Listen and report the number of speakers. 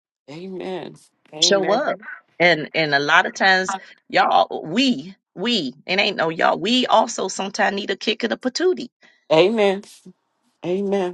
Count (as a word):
two